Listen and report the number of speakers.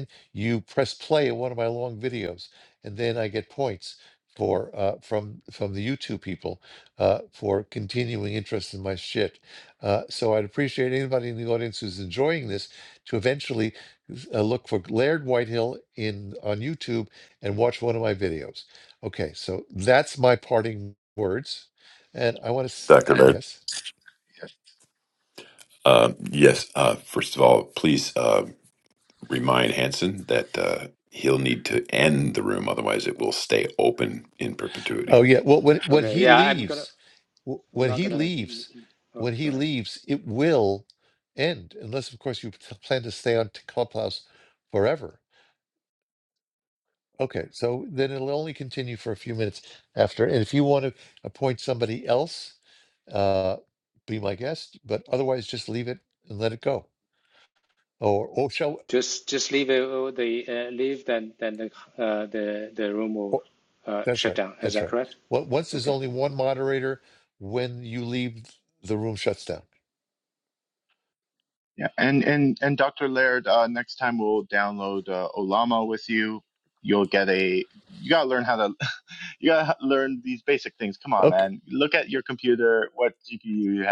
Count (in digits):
4